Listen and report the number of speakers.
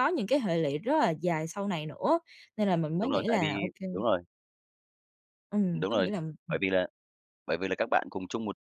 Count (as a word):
two